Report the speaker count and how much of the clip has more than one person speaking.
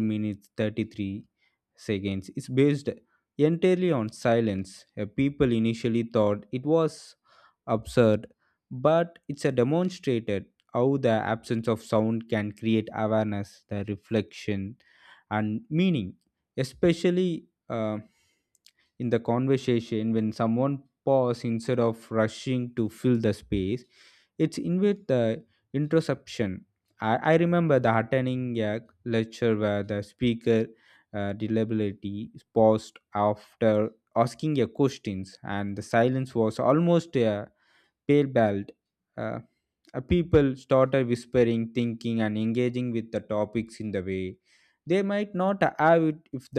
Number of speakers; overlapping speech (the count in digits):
1, no overlap